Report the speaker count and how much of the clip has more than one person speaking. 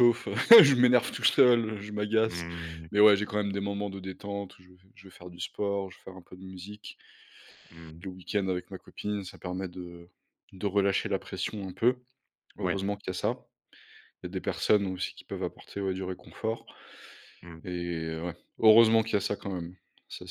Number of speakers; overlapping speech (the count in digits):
2, about 1%